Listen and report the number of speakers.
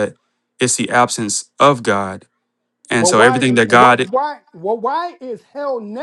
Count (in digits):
2